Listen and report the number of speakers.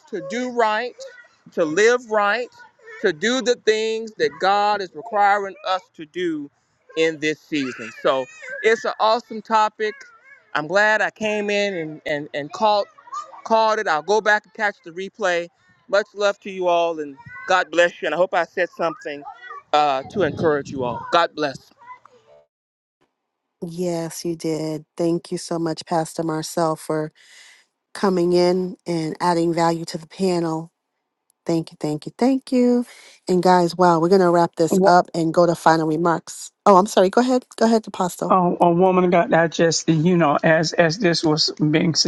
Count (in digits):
3